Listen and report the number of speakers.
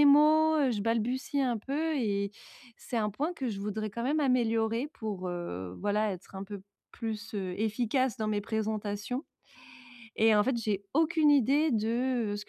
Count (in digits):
1